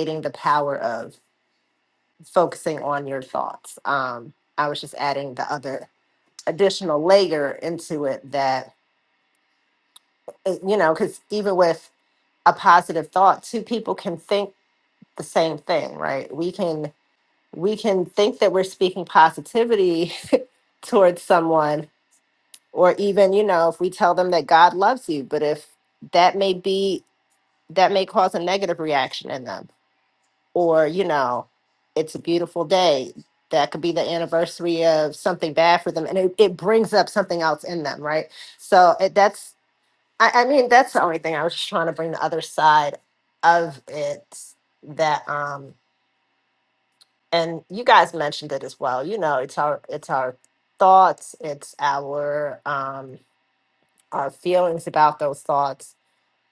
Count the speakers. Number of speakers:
one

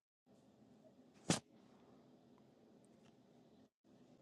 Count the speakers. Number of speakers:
zero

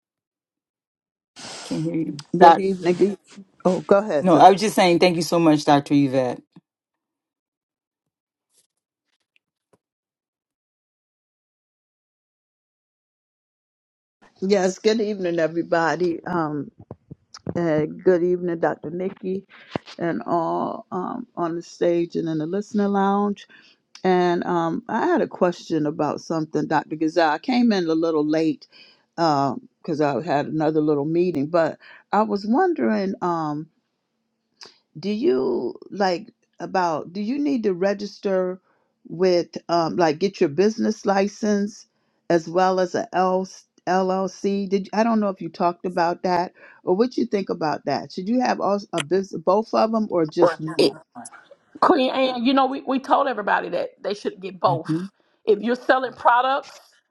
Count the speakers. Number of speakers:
three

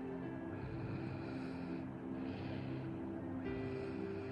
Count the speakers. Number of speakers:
zero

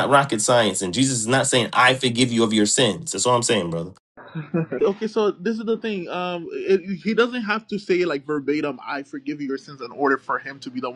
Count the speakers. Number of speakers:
two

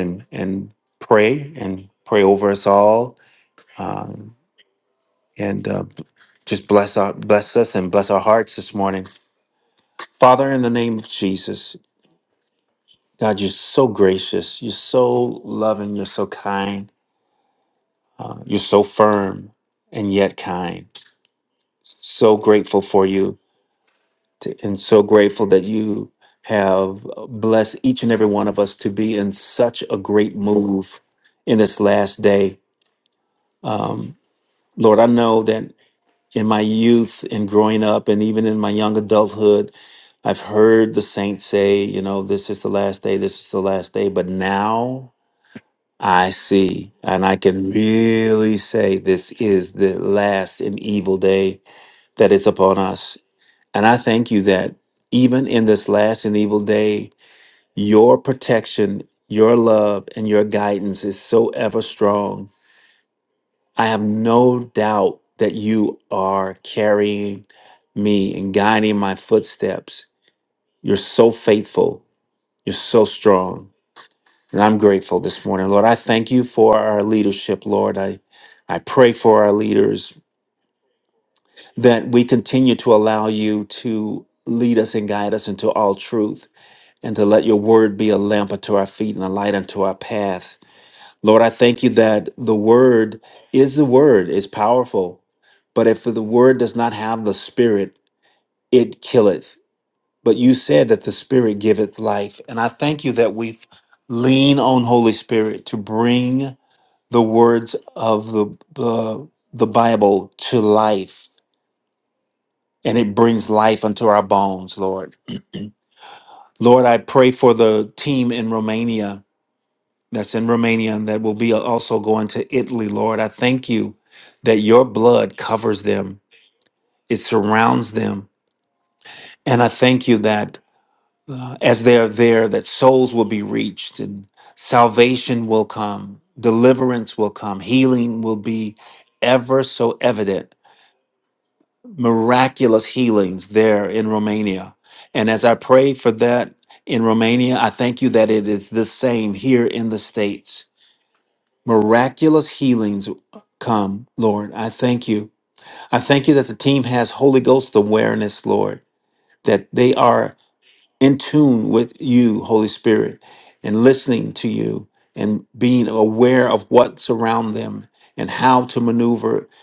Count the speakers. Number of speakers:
one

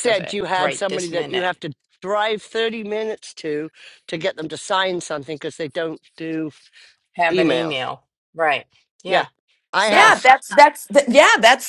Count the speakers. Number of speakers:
three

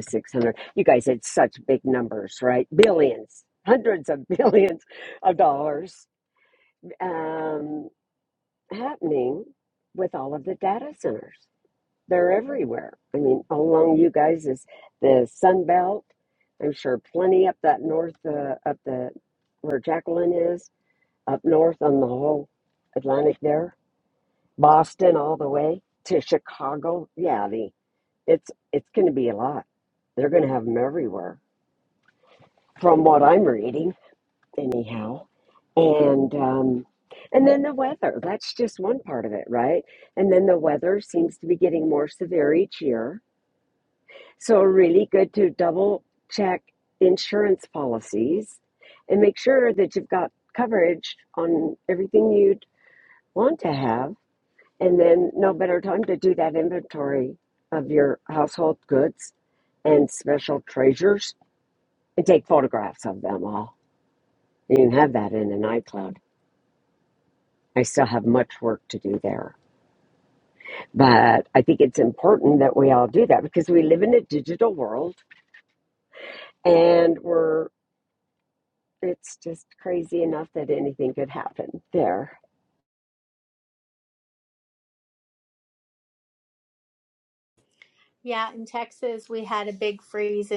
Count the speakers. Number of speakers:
two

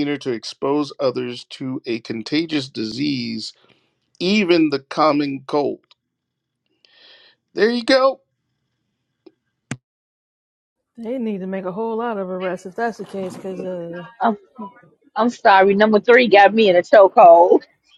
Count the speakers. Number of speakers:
three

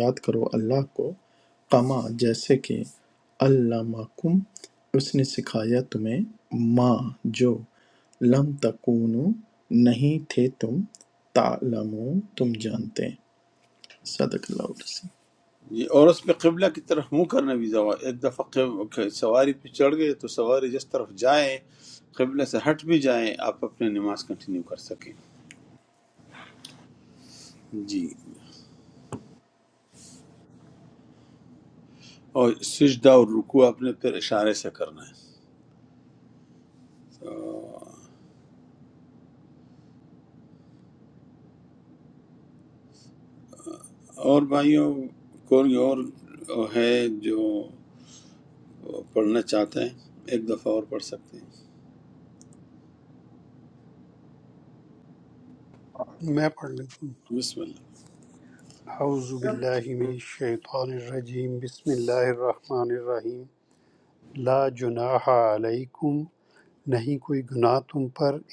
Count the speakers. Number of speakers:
three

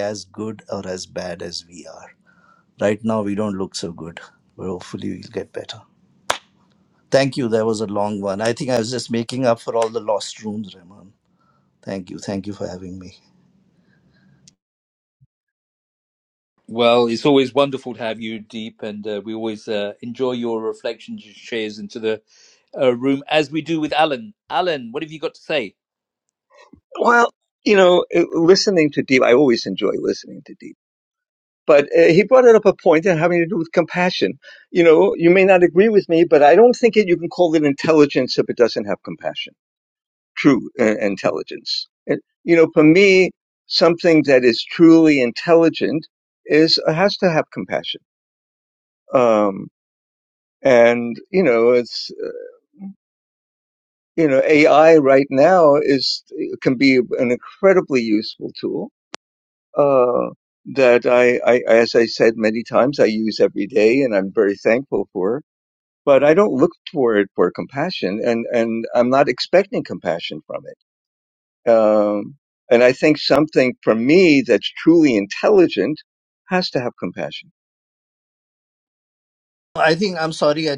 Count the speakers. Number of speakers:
three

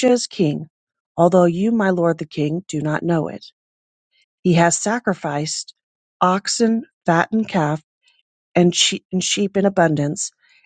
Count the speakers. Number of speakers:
one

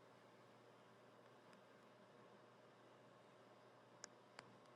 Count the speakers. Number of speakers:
zero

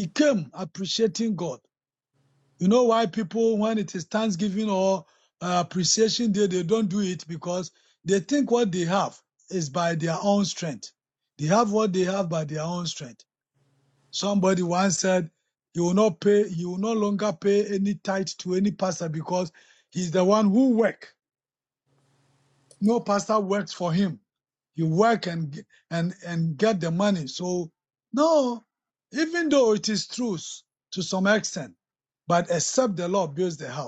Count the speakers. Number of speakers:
one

